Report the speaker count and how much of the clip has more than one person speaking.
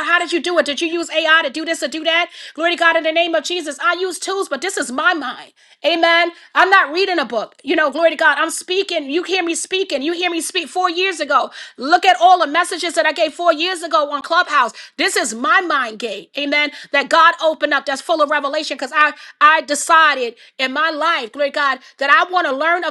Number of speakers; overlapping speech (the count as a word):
one, no overlap